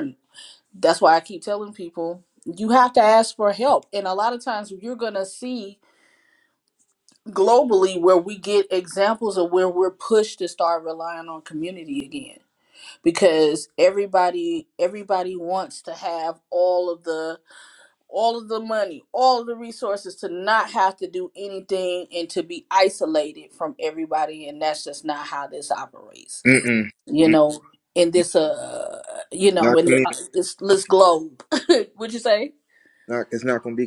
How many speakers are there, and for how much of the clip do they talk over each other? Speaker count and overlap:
two, about 2%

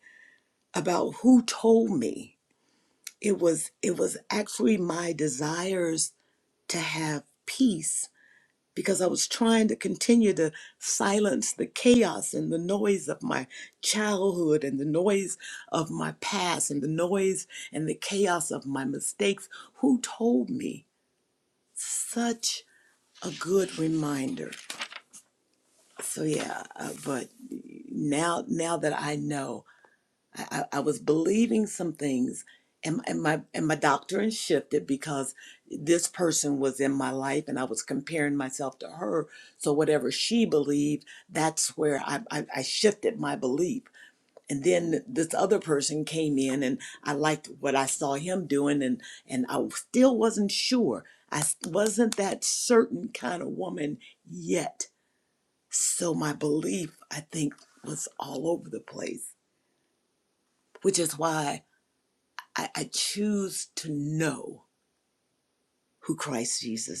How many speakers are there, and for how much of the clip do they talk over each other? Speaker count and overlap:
one, no overlap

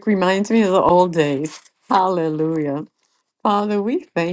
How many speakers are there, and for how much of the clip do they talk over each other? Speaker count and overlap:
one, no overlap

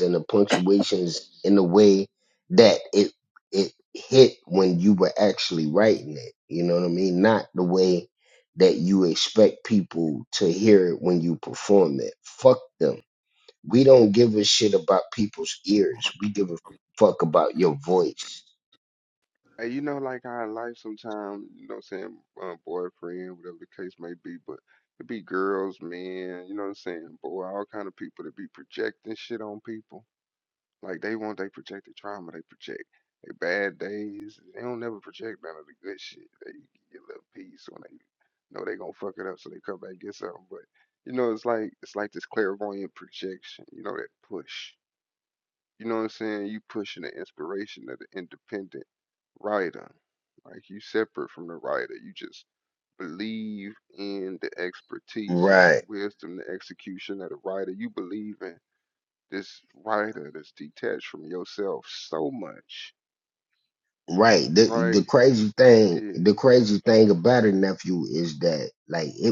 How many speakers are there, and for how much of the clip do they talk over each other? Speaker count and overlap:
two, about 2%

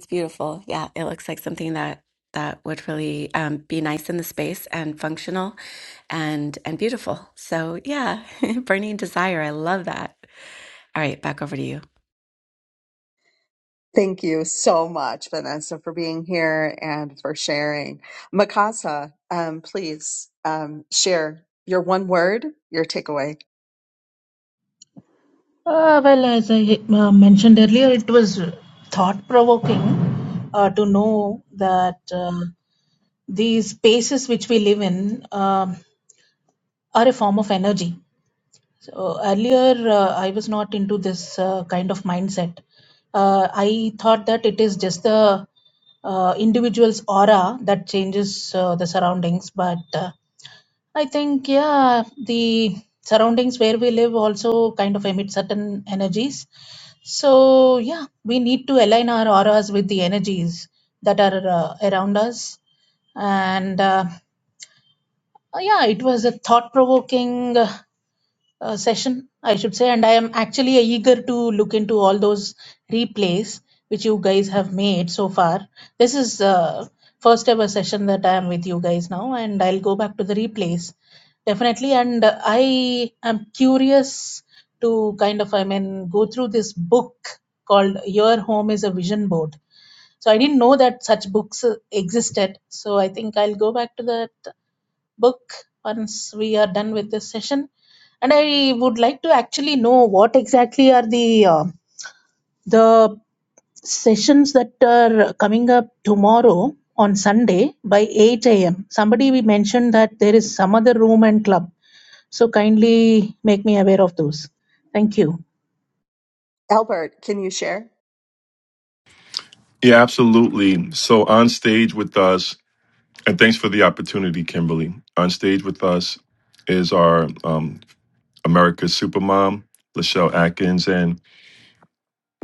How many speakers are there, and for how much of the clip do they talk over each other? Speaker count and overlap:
four, no overlap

